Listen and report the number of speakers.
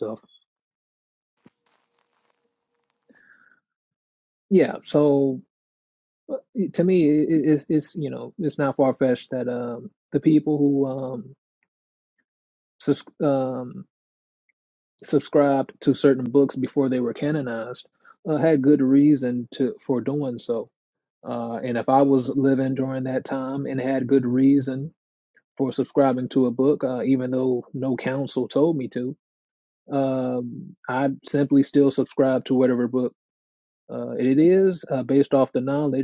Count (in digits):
1